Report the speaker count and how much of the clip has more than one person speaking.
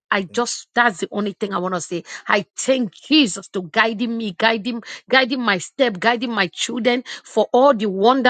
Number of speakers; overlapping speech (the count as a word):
one, no overlap